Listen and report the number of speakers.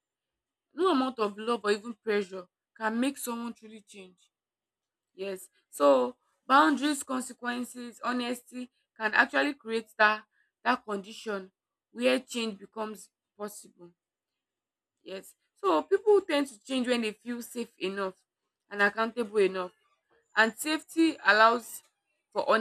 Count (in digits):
1